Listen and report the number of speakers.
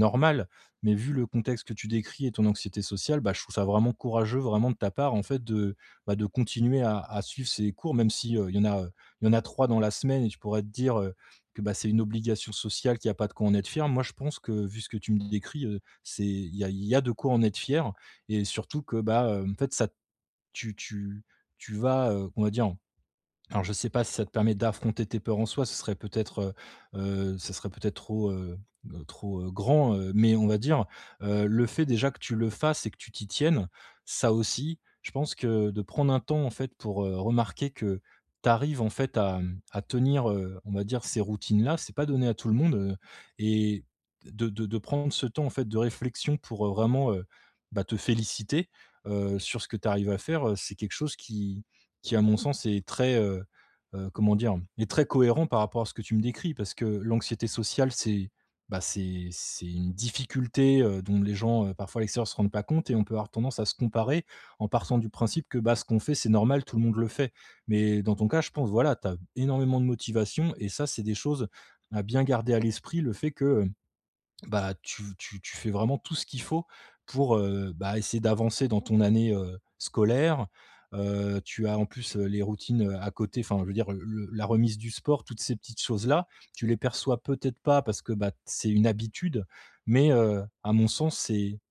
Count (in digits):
1